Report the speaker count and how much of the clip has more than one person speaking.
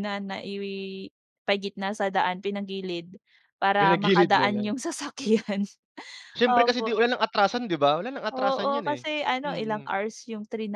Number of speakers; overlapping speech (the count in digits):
2, about 23%